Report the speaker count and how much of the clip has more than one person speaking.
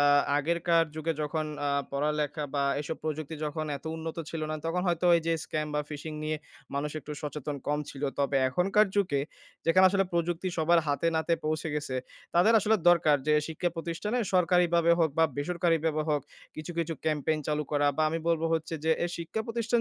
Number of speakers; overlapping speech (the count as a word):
one, no overlap